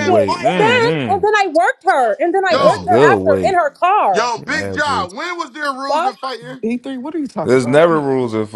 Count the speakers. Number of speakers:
four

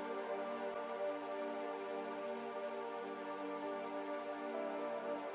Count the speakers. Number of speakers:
zero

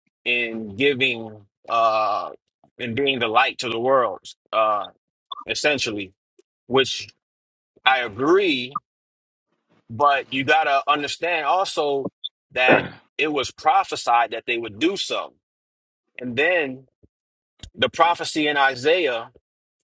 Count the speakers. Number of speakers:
one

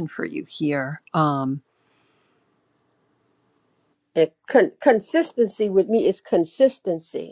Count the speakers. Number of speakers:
two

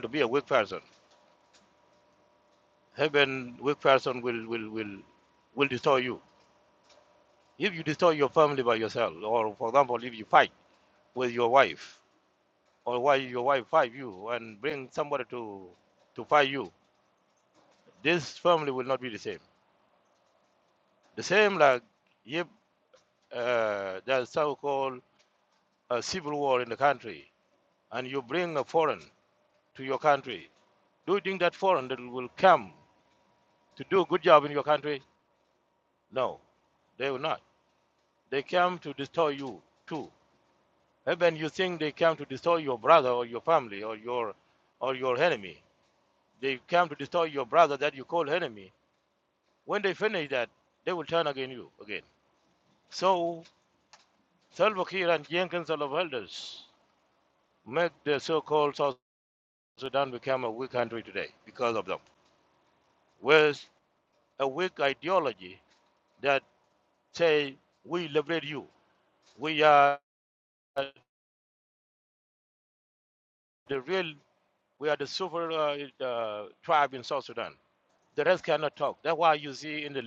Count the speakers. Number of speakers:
one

